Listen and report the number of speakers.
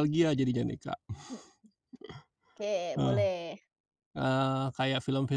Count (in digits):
2